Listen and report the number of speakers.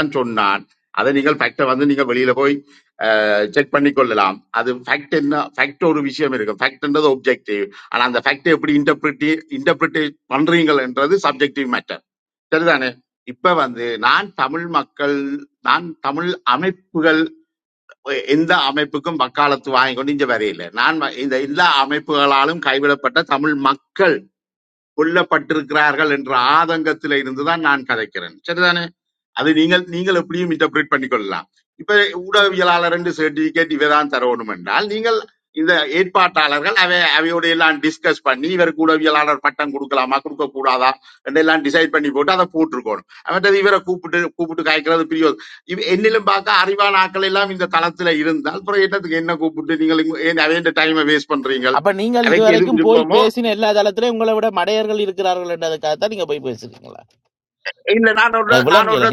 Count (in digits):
2